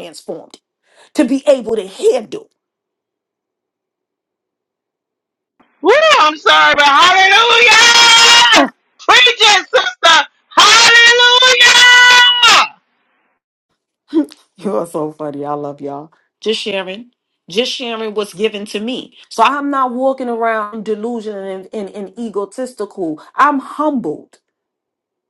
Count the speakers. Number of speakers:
2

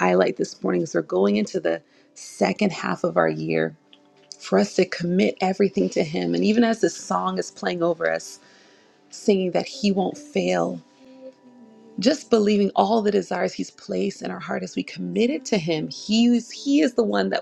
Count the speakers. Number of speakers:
1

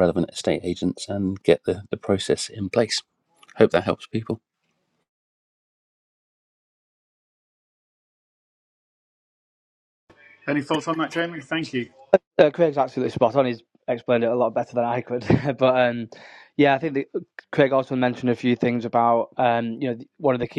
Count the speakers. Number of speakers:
3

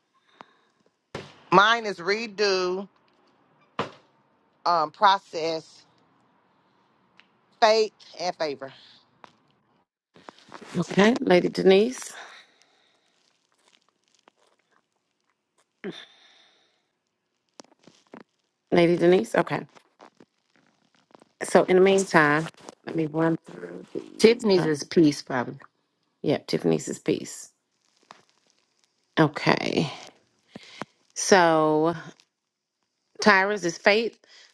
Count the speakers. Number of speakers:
3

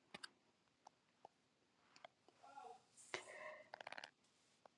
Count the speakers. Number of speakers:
0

